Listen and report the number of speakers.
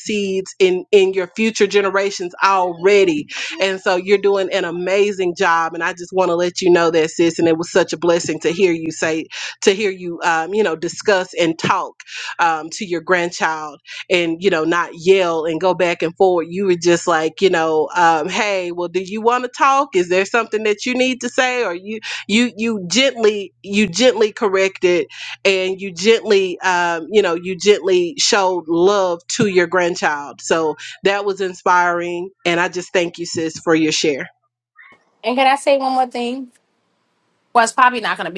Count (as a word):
two